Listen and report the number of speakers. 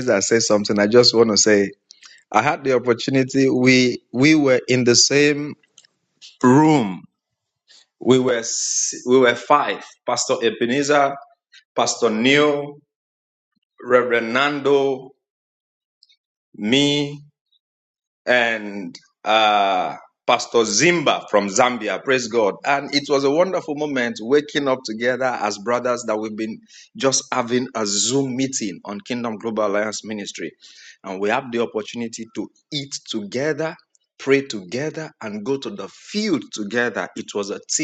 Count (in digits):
1